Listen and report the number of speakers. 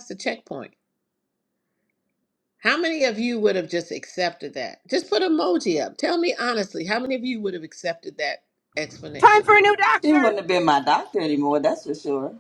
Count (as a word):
three